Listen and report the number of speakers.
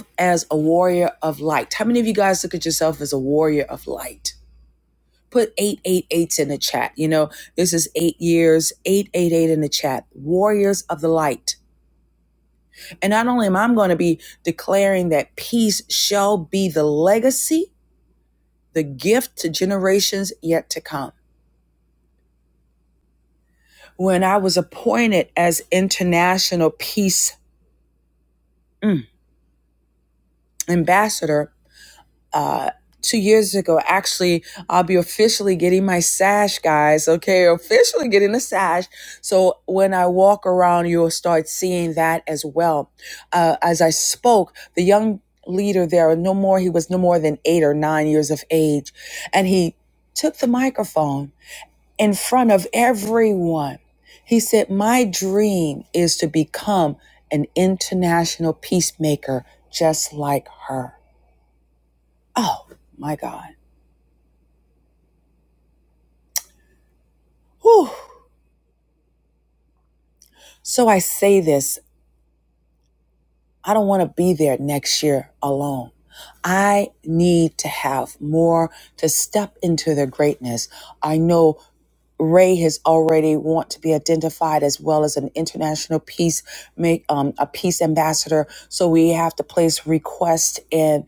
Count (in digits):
1